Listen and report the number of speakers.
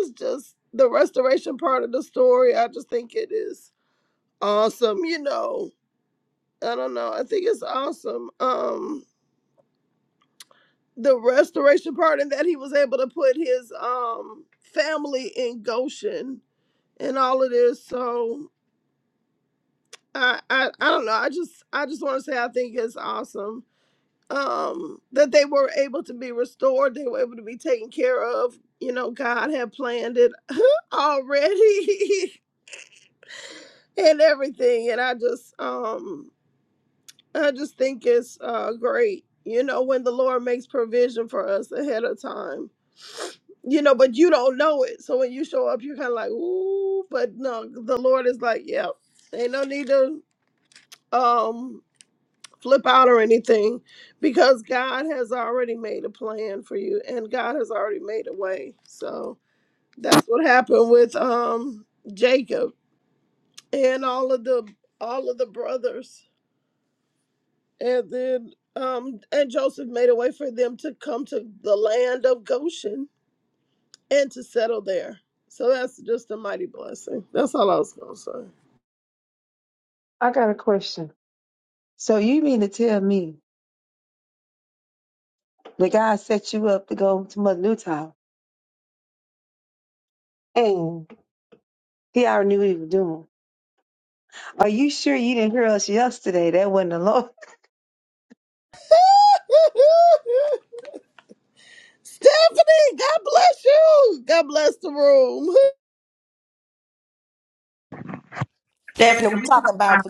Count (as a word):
three